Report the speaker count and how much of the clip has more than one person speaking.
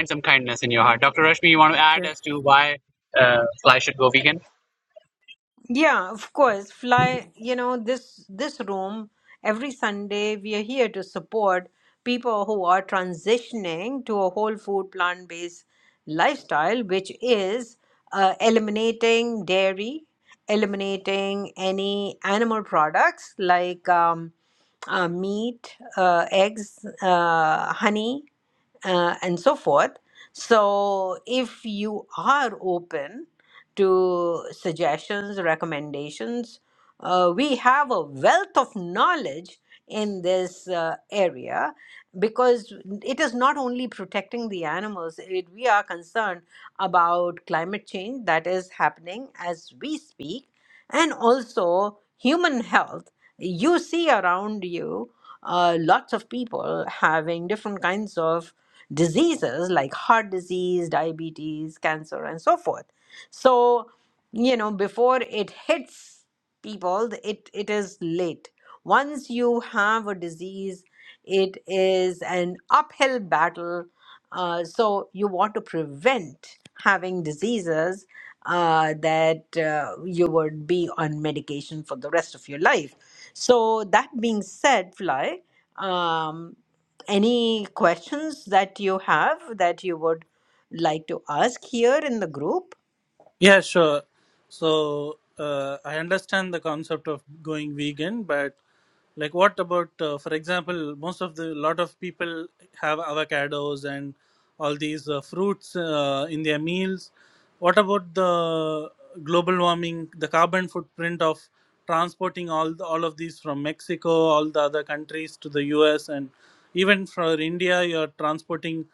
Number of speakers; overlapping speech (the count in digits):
3, under 1%